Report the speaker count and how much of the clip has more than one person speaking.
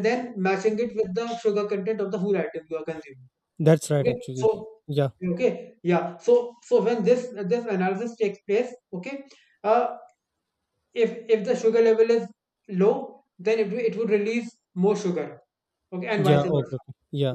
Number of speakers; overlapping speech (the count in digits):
2, about 6%